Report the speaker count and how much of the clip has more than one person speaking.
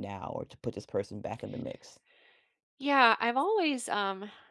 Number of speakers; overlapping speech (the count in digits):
2, no overlap